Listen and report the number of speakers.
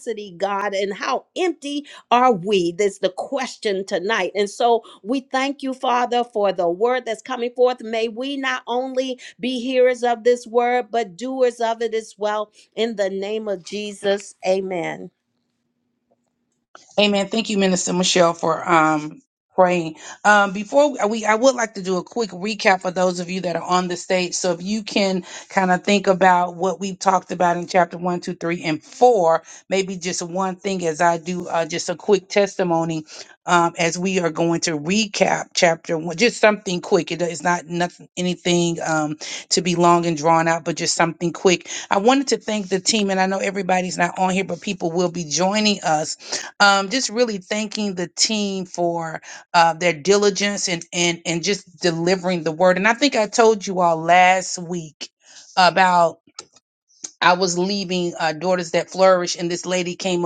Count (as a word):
two